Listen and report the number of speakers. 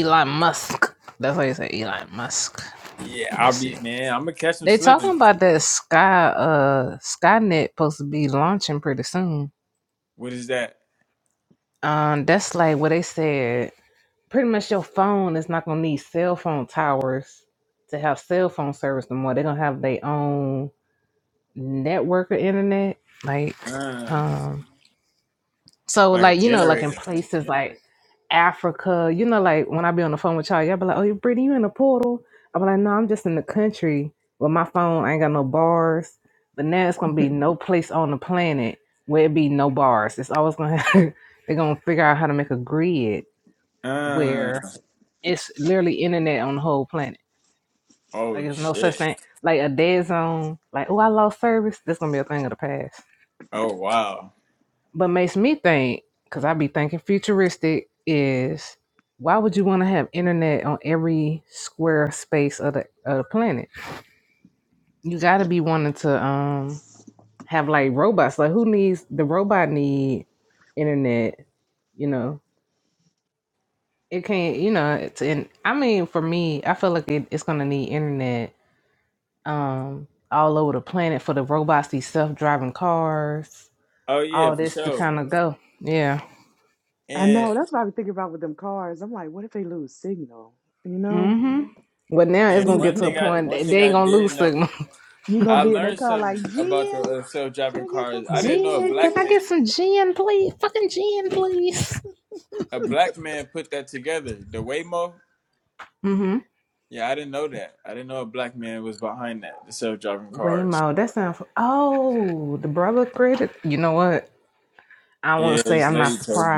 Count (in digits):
3